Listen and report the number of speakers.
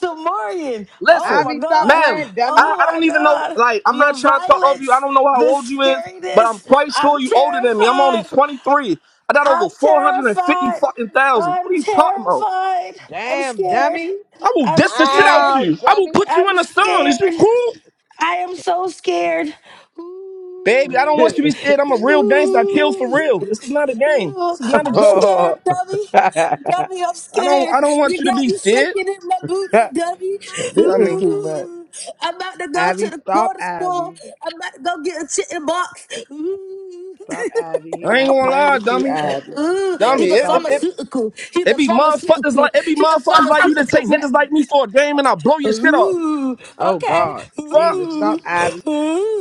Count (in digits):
3